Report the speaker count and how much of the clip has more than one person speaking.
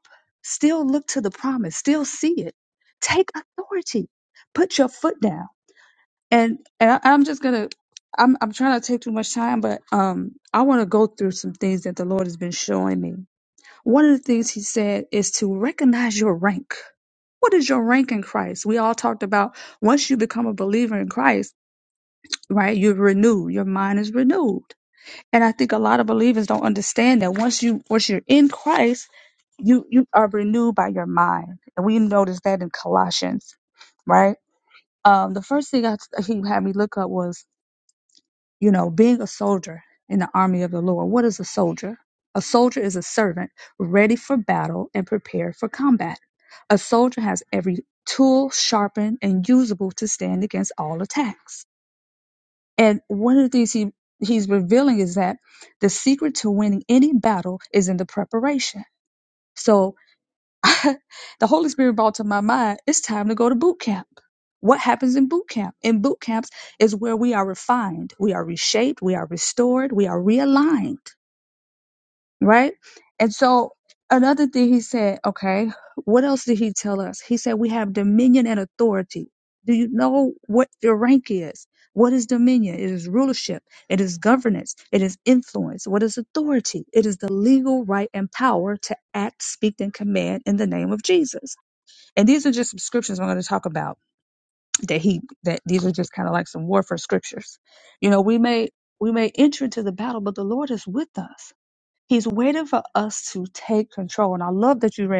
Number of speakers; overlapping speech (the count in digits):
1, no overlap